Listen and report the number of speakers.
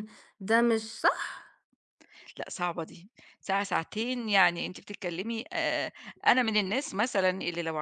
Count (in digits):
2